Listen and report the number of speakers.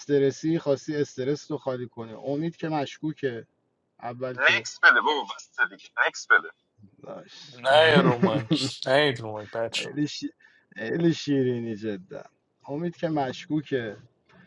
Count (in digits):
3